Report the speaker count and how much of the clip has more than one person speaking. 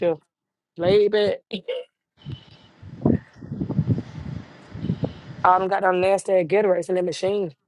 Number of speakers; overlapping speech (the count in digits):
1, no overlap